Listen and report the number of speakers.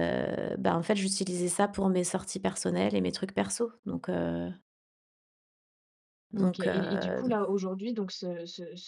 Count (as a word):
two